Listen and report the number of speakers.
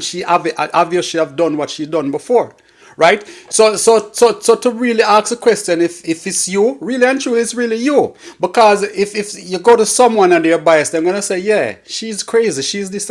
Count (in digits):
1